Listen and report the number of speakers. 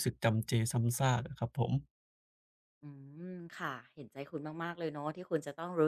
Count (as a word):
two